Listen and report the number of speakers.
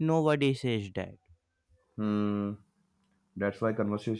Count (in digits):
2